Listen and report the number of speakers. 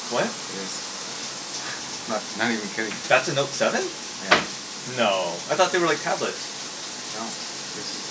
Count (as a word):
two